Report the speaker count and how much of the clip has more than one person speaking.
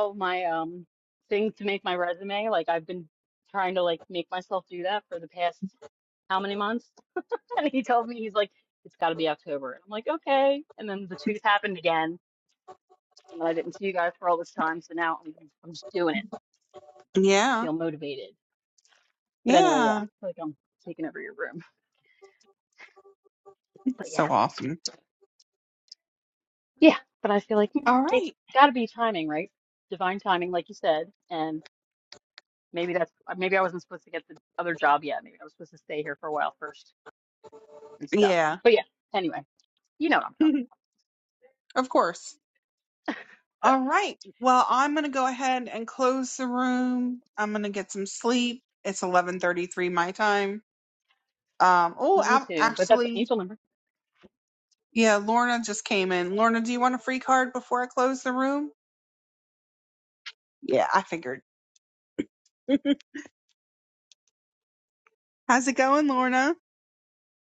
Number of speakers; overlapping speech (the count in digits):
2, about 4%